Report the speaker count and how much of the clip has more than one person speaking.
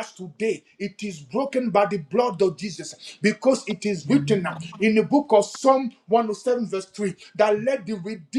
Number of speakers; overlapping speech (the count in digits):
1, no overlap